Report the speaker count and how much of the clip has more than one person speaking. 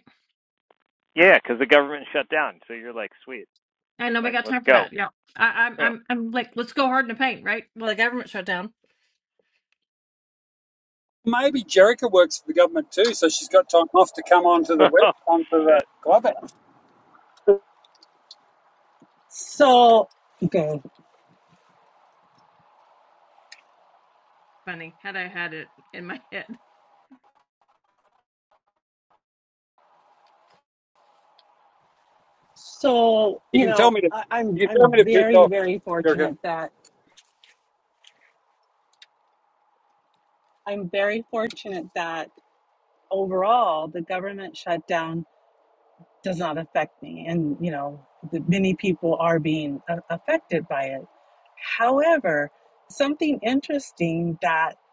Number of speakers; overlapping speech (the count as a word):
four, about 6%